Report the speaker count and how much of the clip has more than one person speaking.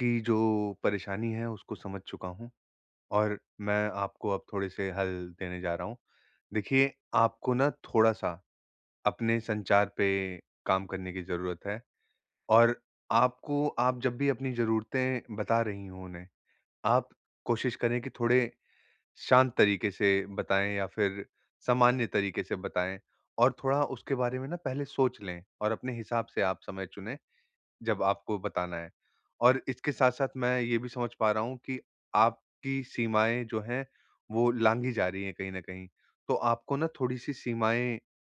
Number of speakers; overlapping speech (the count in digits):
1, no overlap